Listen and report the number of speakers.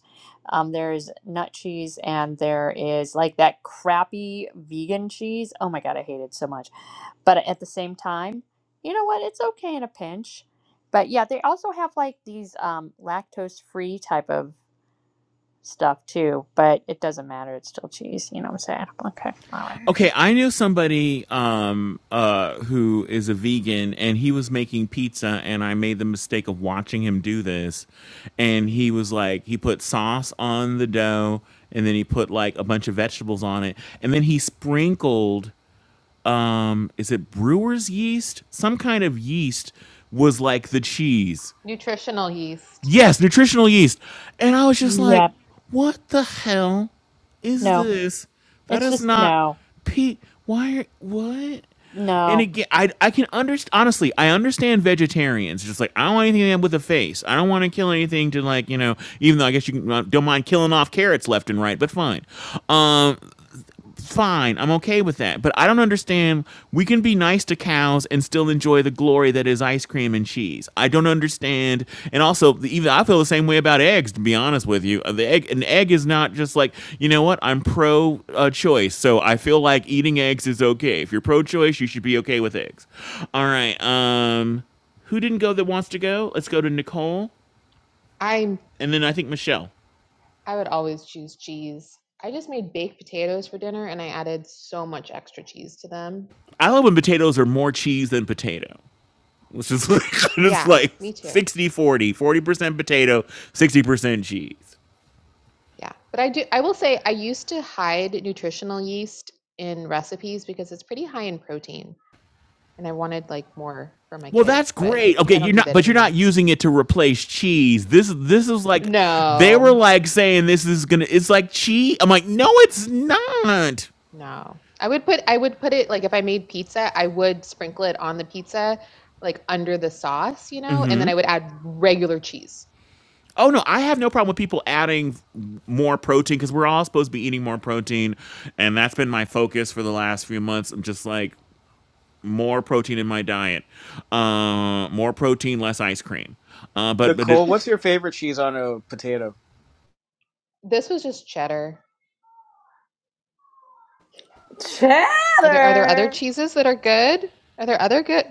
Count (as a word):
five